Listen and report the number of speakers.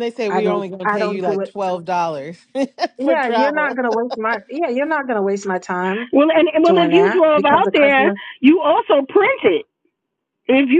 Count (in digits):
3